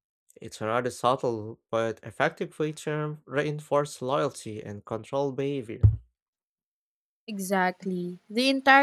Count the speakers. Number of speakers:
2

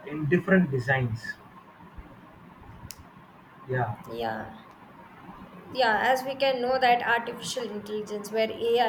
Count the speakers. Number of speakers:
2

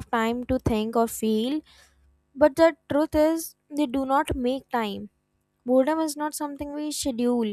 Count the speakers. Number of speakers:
1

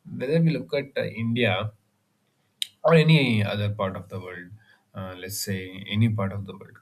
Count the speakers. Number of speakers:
1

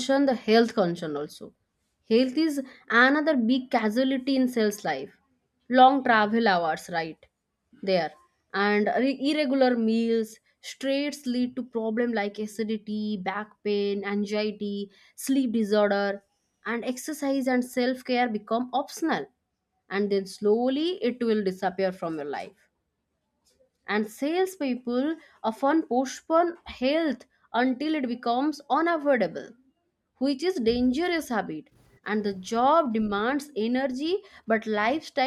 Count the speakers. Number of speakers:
1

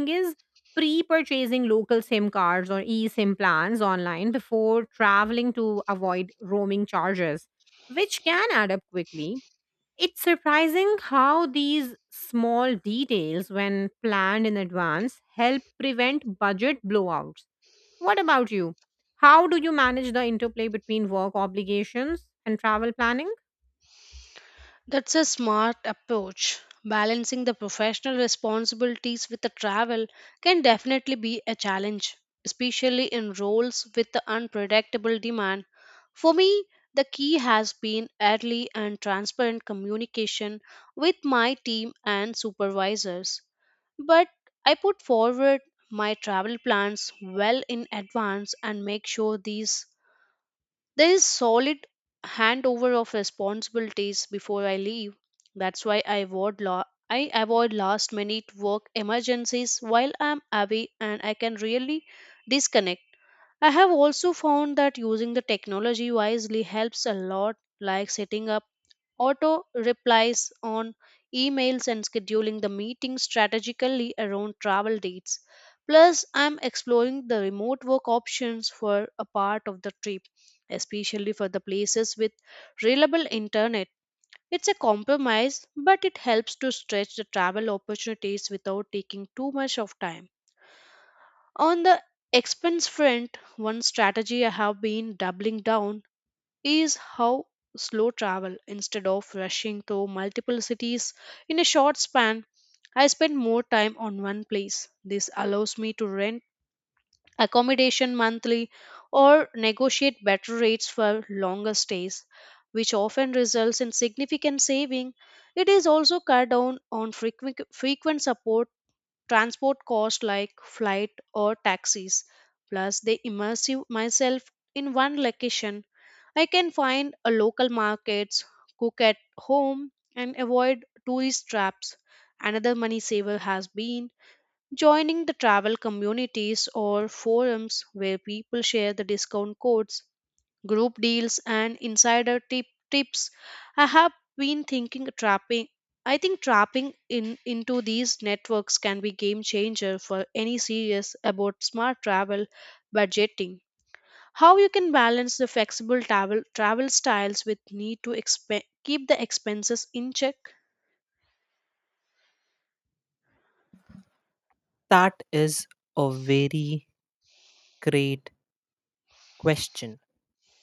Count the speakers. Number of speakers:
3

